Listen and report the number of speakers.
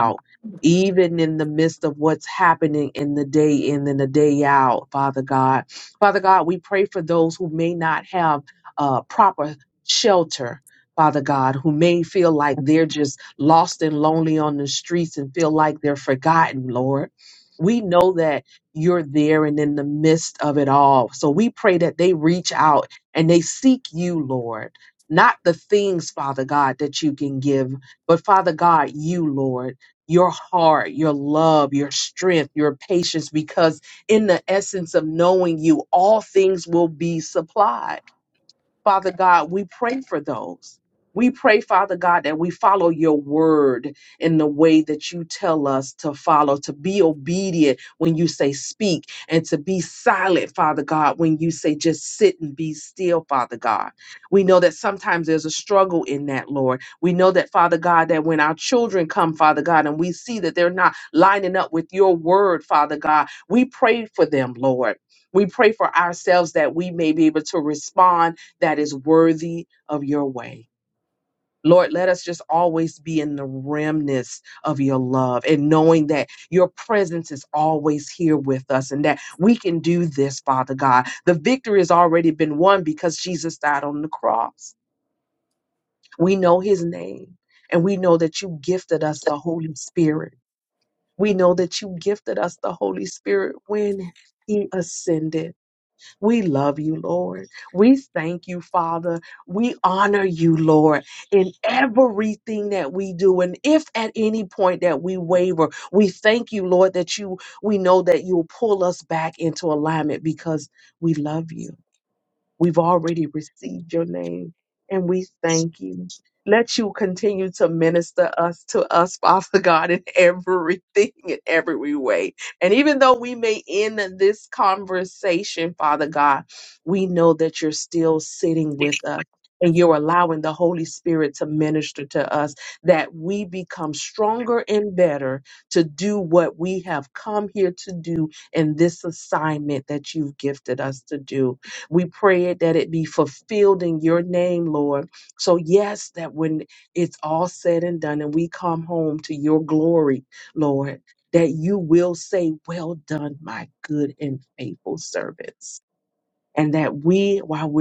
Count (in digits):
1